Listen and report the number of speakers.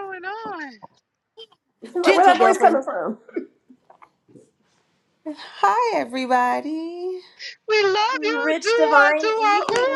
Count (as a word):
three